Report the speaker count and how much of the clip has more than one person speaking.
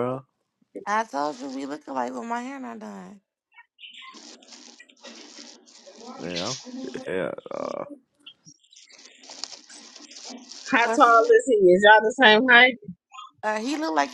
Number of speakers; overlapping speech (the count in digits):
3, about 2%